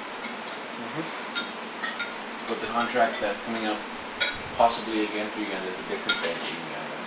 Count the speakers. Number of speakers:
one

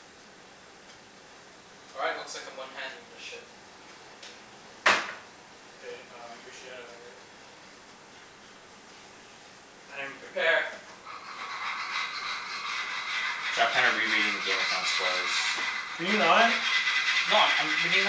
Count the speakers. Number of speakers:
three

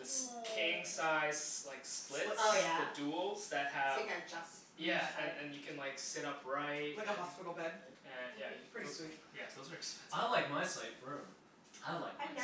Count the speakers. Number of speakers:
four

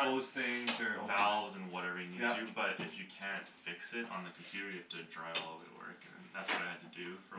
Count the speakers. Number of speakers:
two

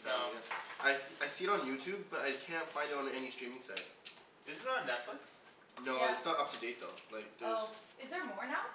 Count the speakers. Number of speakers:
three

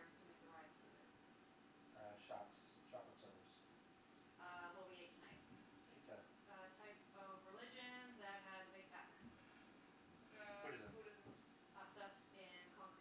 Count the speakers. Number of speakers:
three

